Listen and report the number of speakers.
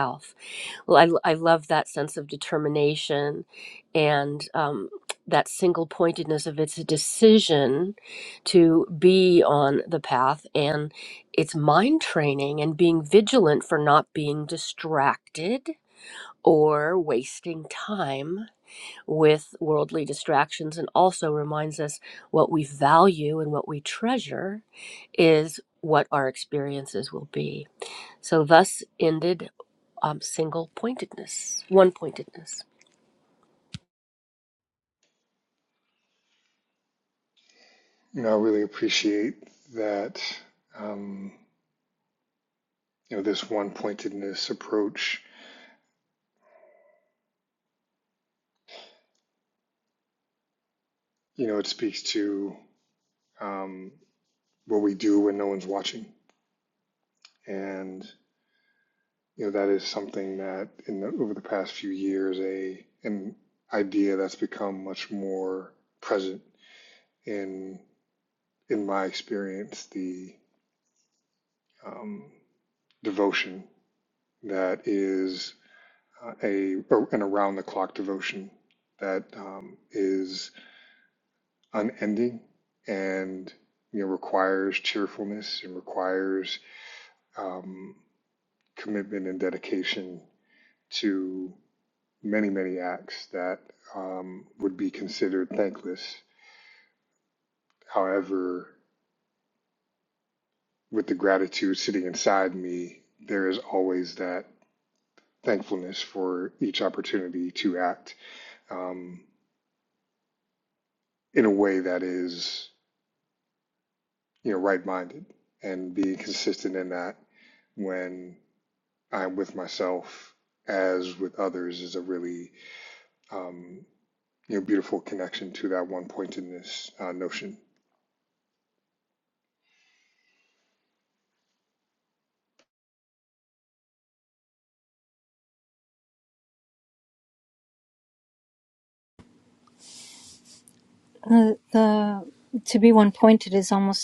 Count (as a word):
three